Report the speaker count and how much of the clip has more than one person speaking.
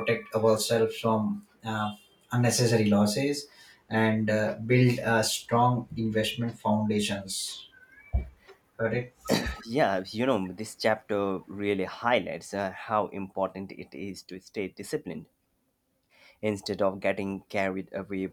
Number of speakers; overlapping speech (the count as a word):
two, no overlap